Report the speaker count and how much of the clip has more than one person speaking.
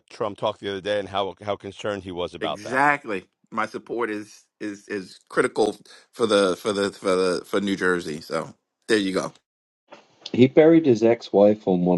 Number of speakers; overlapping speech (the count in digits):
3, about 3%